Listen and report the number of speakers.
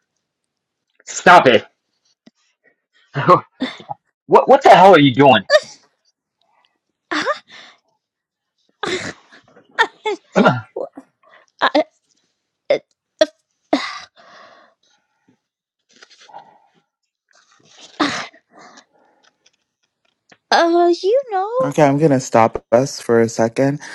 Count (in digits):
3